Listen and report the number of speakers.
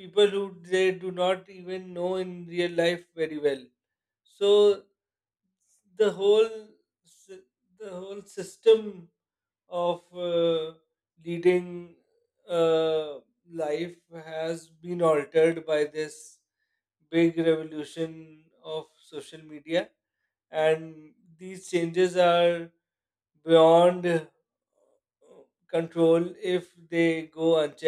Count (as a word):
one